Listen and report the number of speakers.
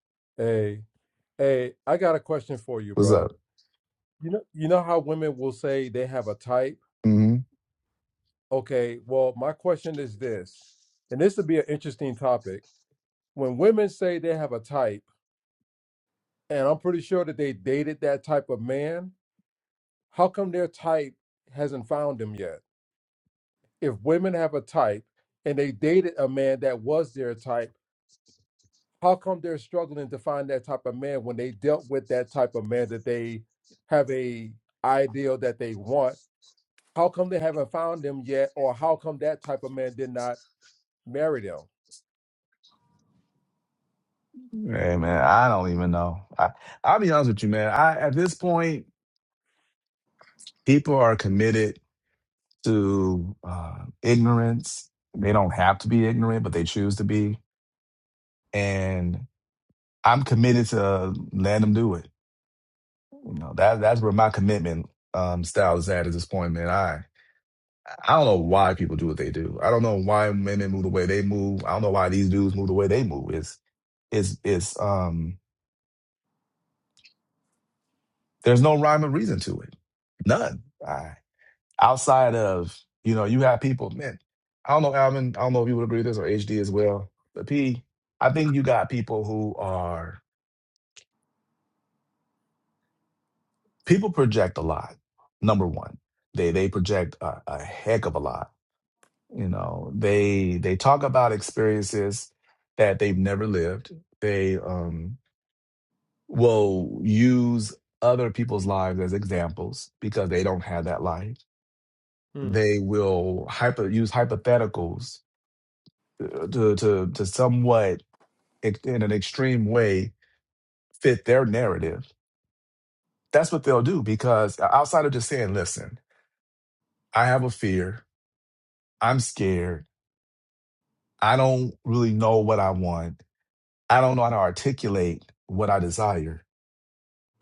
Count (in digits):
2